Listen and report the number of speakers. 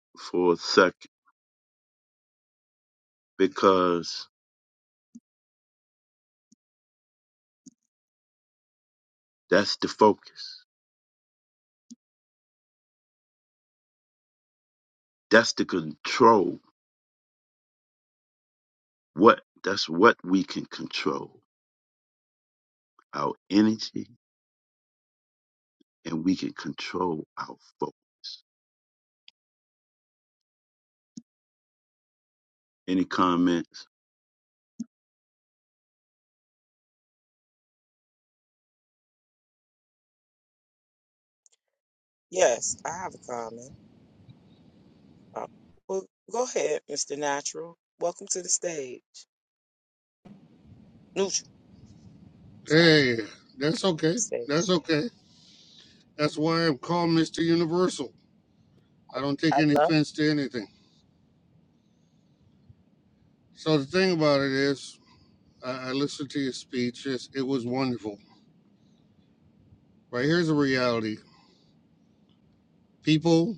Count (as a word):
three